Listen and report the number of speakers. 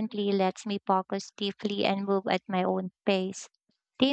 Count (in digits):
1